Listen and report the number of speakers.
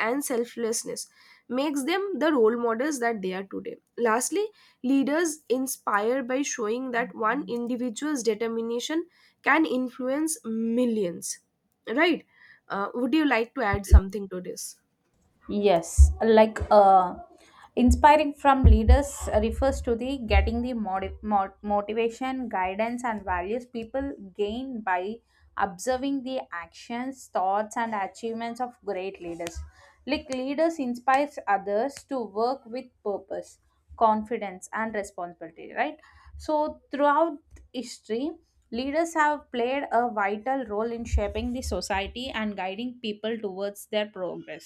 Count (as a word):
two